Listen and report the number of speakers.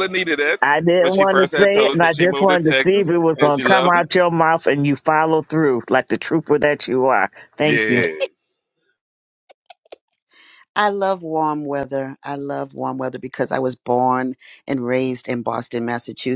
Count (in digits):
3